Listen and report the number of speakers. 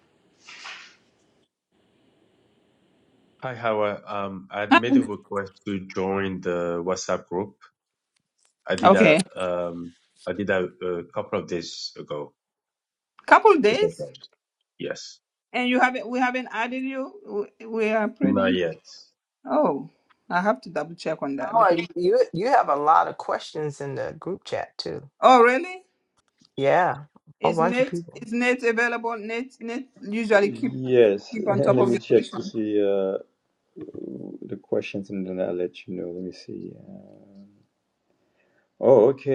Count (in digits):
4